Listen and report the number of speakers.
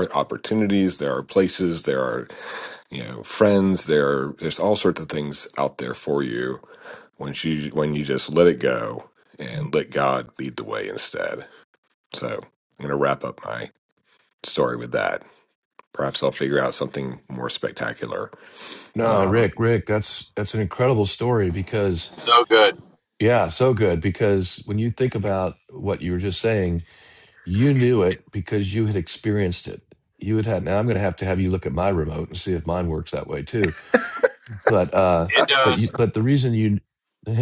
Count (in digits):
3